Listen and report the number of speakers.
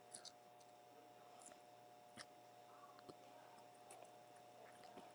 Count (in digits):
0